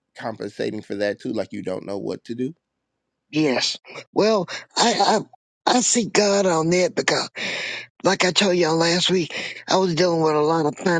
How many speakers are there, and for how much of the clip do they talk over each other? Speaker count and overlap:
2, no overlap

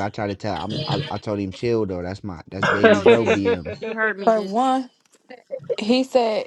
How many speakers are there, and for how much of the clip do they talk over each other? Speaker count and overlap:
3, about 13%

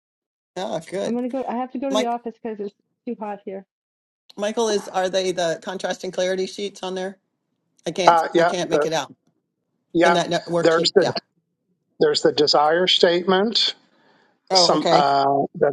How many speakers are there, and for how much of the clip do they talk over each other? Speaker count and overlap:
3, about 15%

